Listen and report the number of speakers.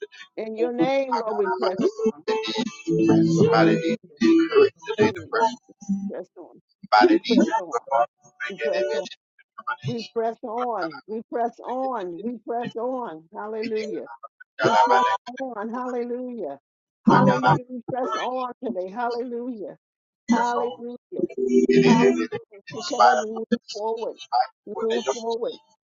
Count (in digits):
2